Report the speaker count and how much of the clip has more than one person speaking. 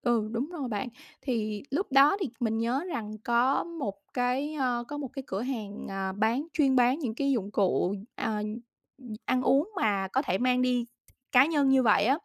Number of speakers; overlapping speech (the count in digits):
1, no overlap